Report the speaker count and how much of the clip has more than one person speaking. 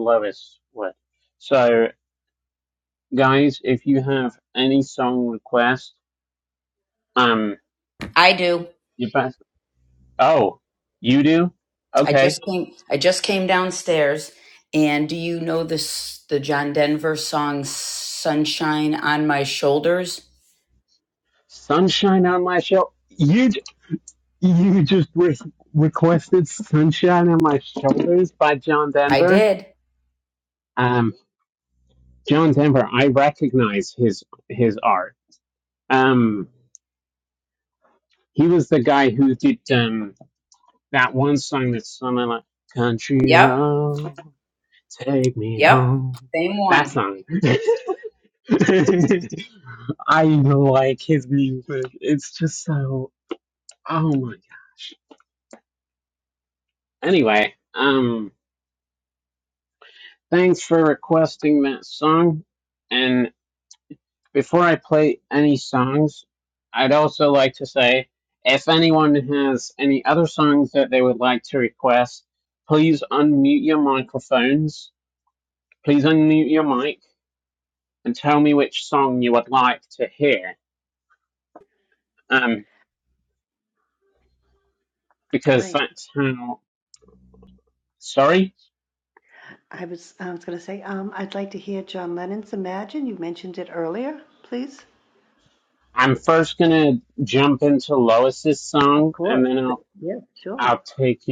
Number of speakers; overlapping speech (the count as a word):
three, about 3%